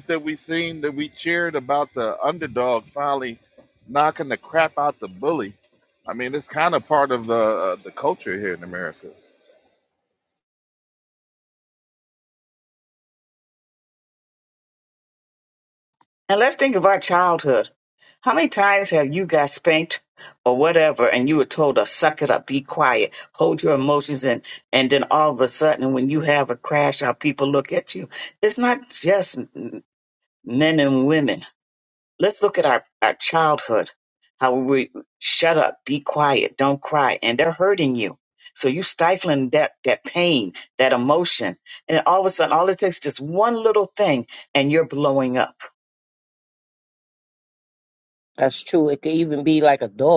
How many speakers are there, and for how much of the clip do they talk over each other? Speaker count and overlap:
3, no overlap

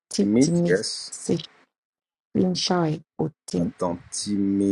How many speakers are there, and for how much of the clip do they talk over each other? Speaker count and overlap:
2, about 14%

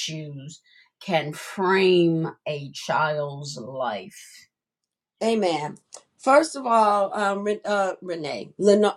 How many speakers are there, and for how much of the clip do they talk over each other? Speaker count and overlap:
2, no overlap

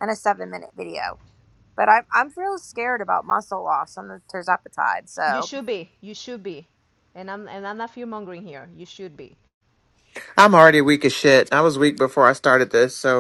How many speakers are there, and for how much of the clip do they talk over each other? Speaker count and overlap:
3, about 2%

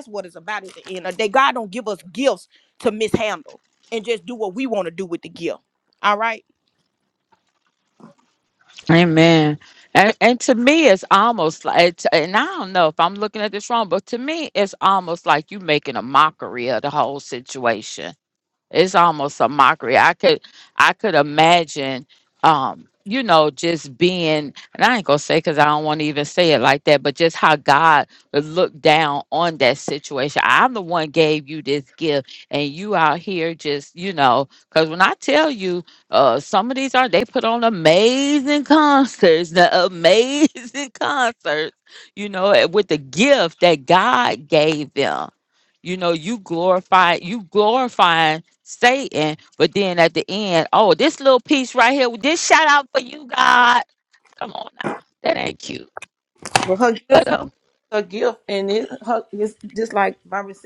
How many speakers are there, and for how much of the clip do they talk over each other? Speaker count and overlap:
3, under 1%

